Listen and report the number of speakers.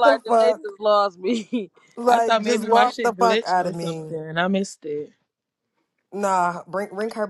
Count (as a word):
three